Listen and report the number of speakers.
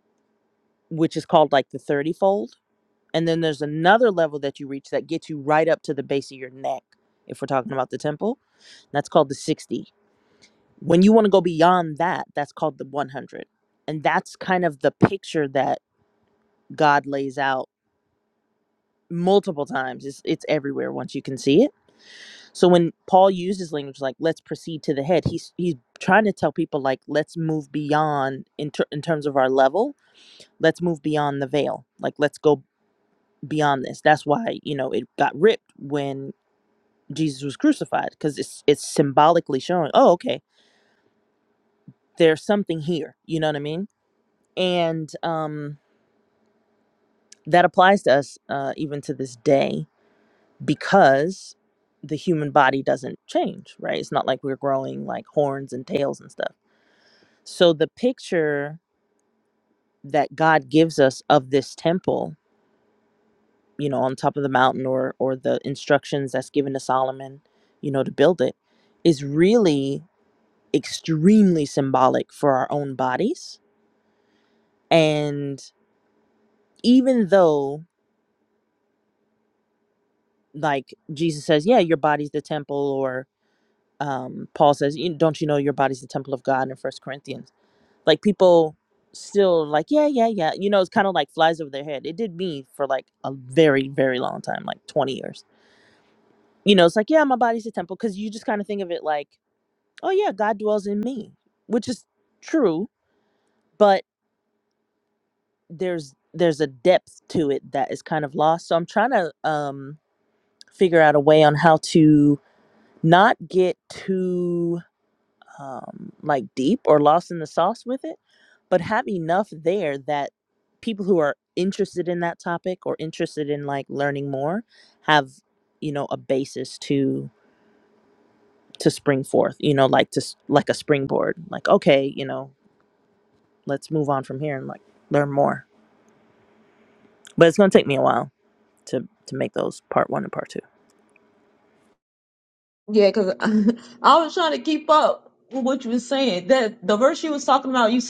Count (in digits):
2